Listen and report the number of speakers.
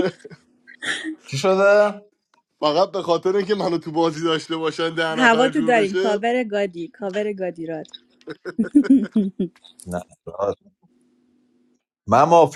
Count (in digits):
3